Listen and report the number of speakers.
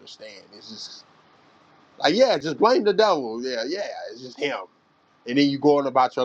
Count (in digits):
1